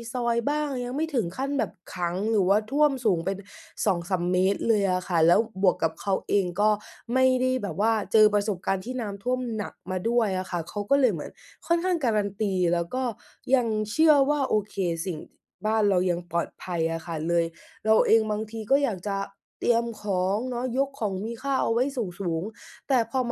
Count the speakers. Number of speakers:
one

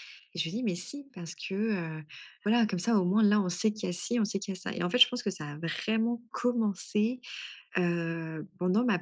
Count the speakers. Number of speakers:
one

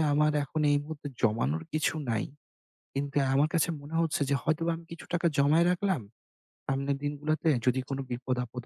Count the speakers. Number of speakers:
one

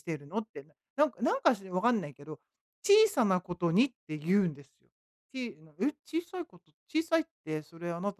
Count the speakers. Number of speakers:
one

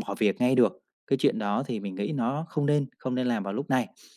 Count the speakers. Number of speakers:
one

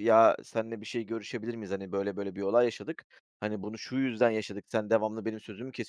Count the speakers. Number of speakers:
one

